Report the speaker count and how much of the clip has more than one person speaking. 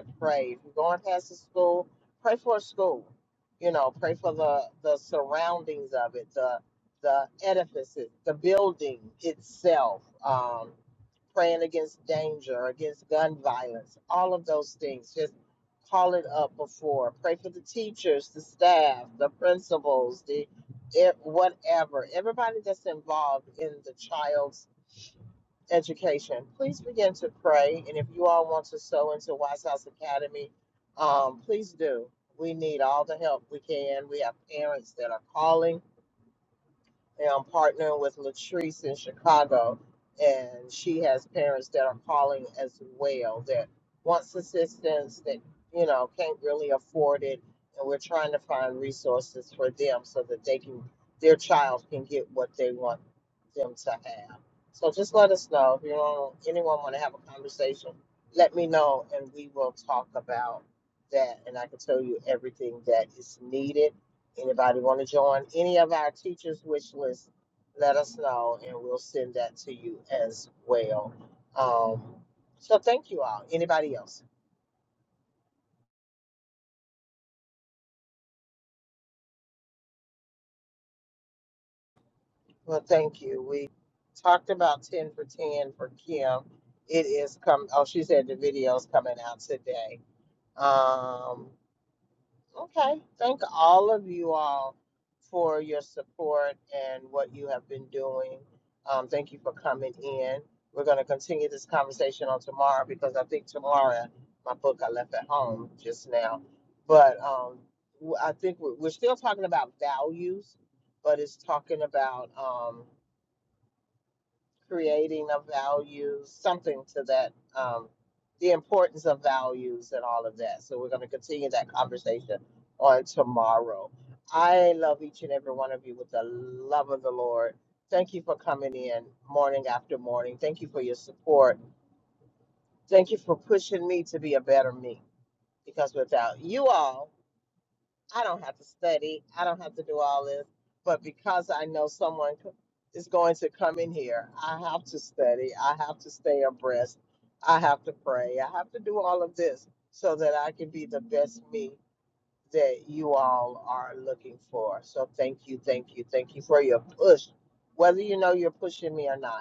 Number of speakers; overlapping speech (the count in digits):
1, no overlap